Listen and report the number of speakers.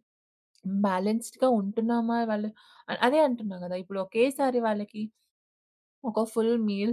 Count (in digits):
1